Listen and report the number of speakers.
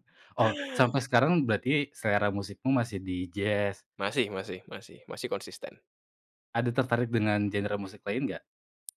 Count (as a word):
two